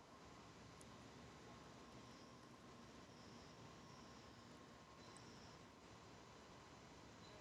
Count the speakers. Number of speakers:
zero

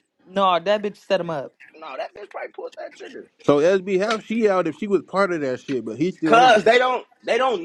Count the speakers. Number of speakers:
three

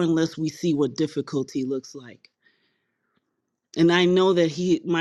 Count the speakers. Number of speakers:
one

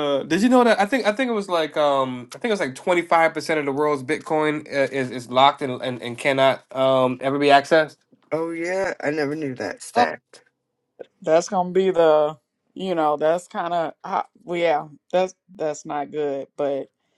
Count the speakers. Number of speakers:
three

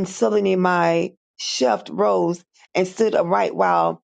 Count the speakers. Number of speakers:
one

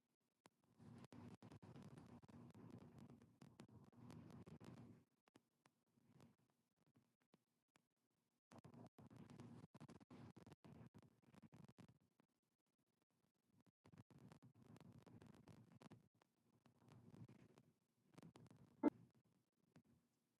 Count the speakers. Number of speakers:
zero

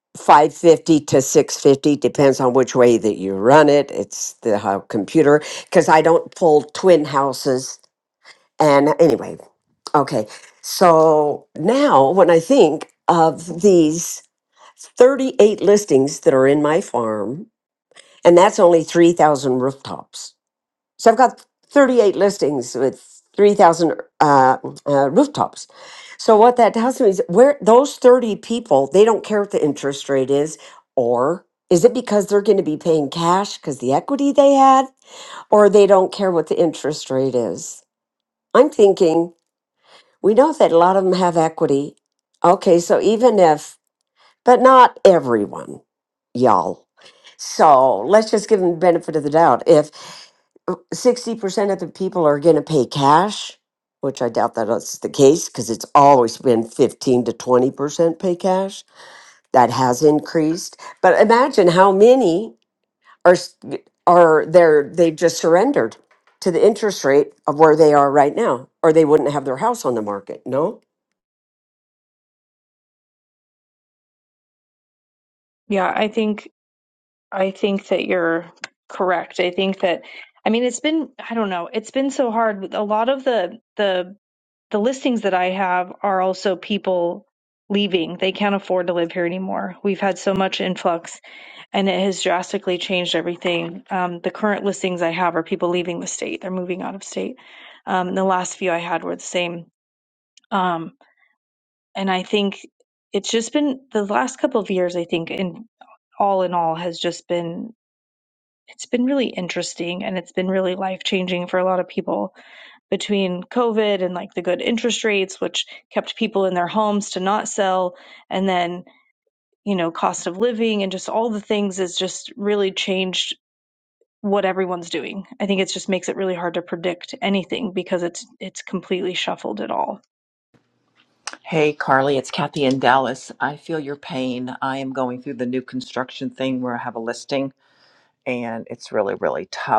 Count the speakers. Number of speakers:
three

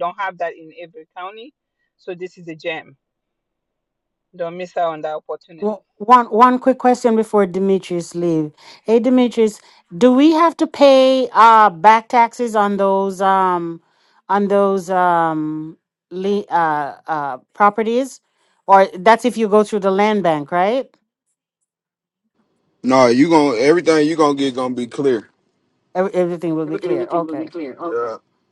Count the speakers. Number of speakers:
three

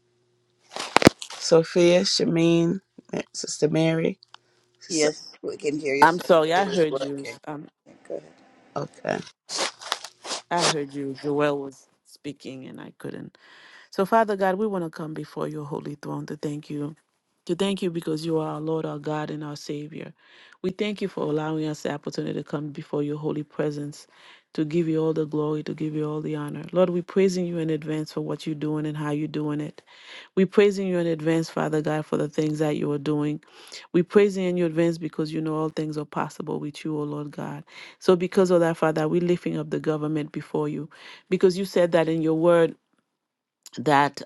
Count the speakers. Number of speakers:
three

